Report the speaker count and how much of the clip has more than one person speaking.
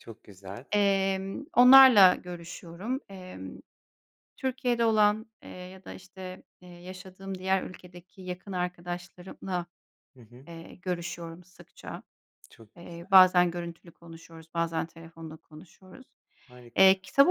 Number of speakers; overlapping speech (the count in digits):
2, under 1%